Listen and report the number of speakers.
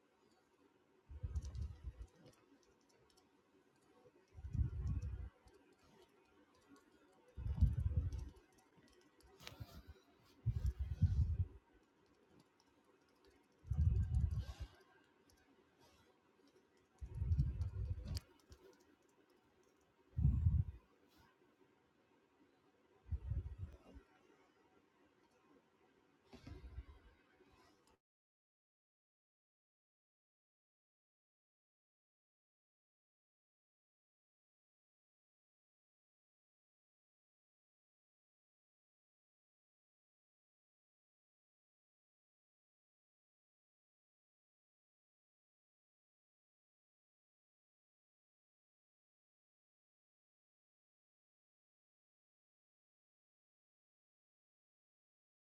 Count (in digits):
0